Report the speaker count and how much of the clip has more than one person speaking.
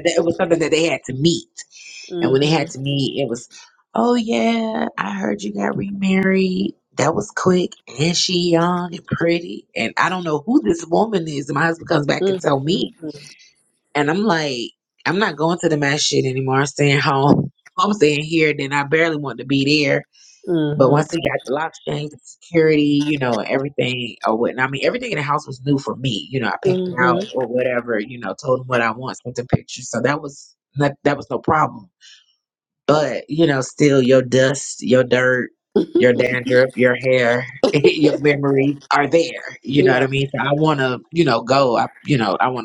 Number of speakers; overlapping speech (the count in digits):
2, about 7%